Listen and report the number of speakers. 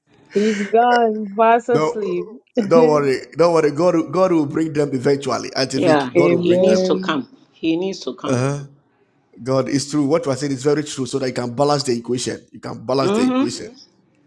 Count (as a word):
three